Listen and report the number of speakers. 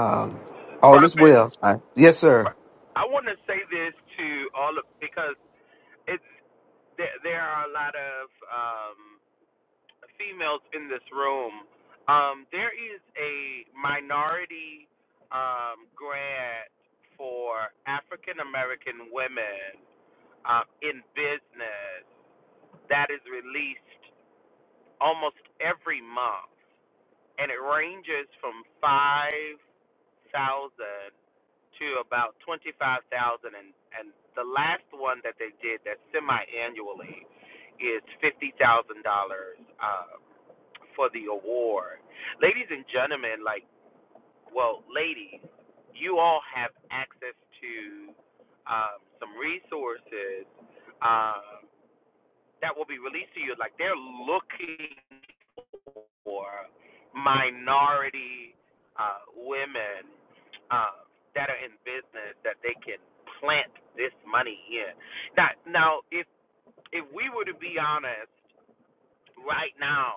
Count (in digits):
2